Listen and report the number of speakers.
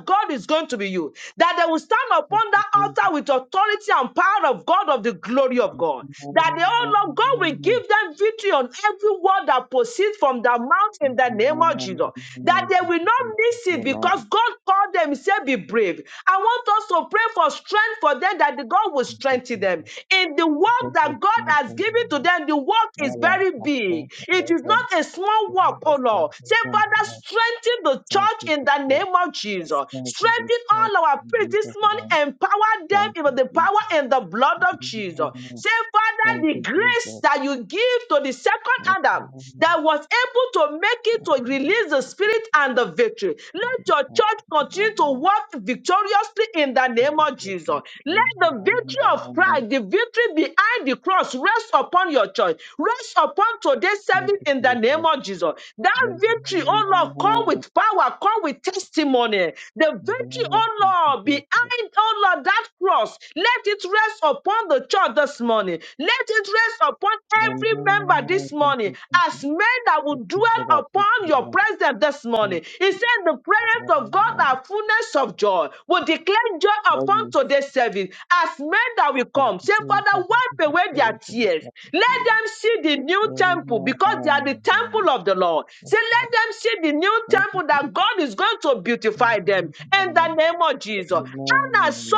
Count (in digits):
2